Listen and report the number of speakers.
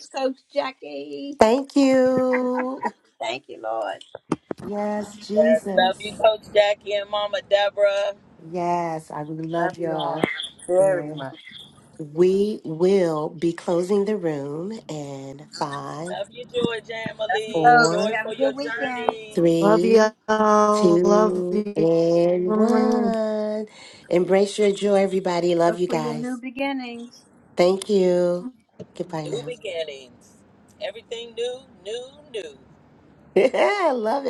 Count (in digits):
4